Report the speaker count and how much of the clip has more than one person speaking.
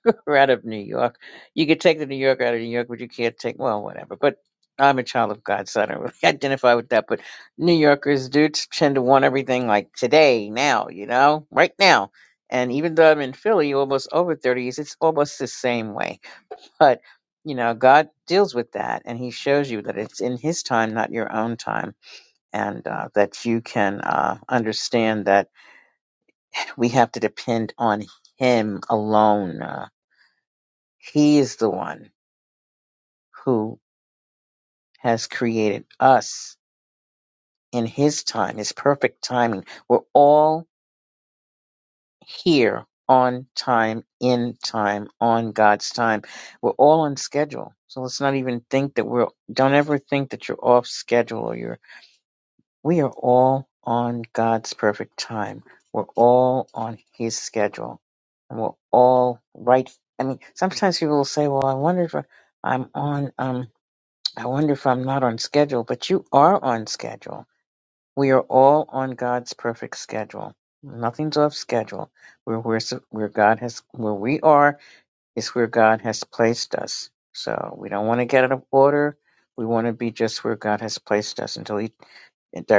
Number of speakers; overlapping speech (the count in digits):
1, no overlap